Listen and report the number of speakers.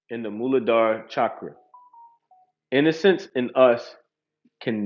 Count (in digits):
1